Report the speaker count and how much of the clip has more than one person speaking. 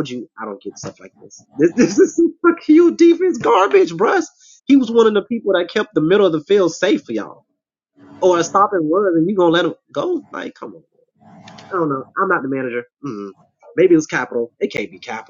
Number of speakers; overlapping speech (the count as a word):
one, no overlap